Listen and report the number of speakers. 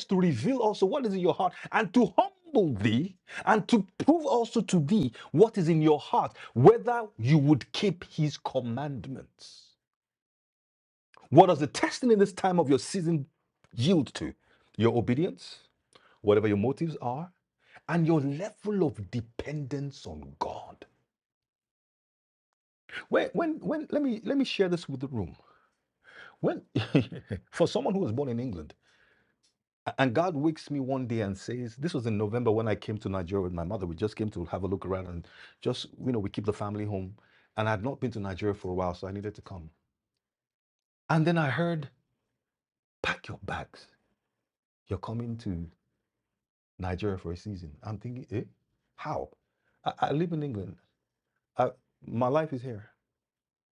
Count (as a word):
one